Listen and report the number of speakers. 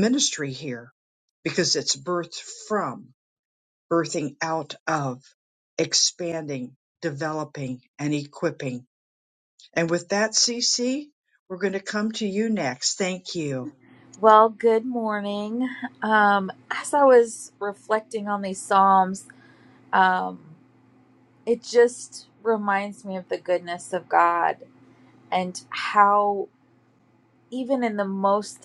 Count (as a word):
two